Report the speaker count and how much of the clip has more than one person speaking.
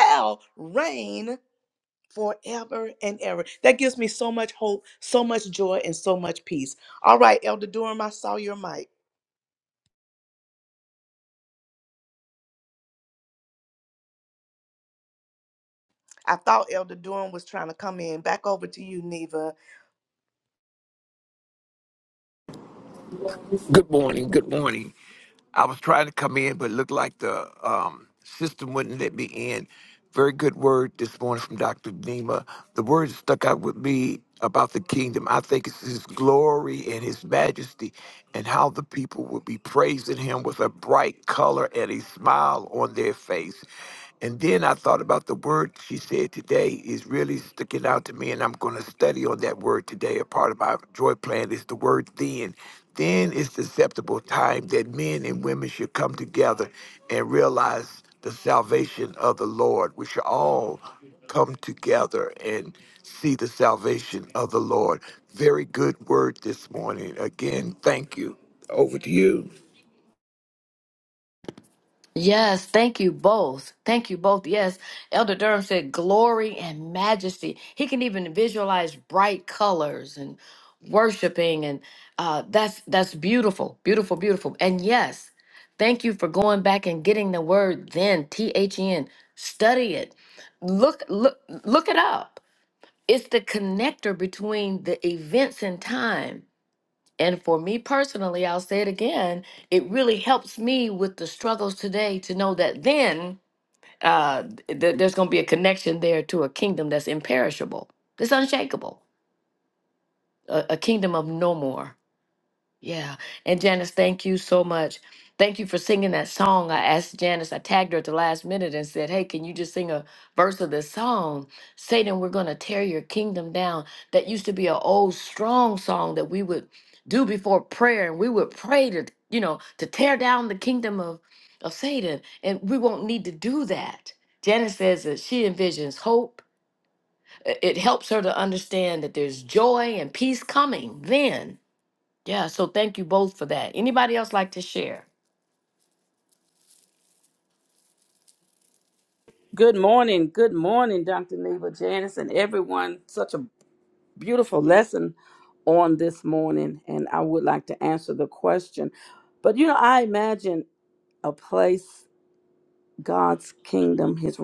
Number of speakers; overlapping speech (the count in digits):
4, no overlap